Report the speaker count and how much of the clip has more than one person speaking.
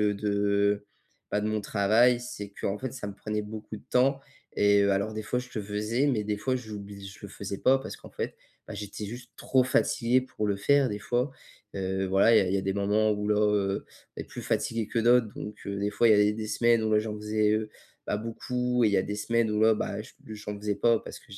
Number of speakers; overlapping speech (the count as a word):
one, no overlap